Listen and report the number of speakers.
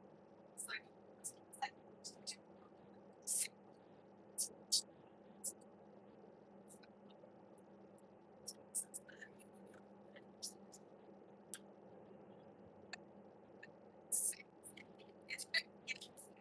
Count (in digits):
0